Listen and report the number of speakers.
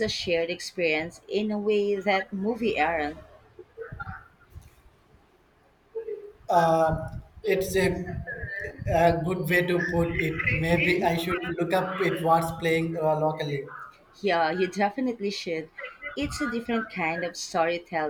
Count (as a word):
two